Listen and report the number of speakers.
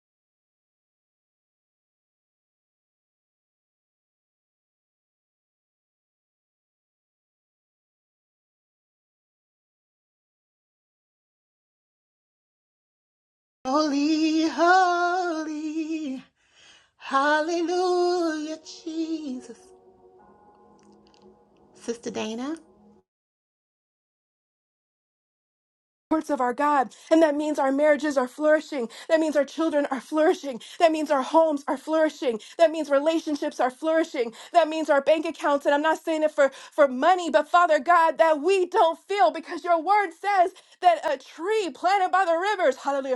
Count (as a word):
two